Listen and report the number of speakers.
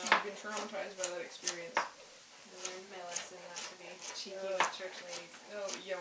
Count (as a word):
two